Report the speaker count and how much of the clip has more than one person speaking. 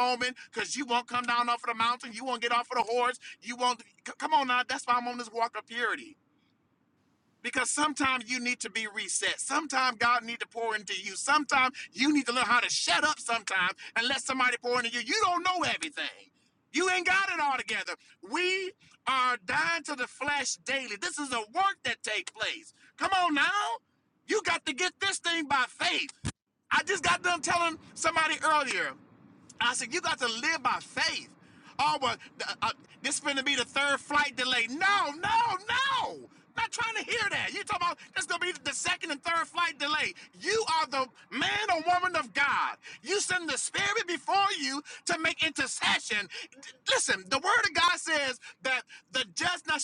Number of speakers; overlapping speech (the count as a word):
one, no overlap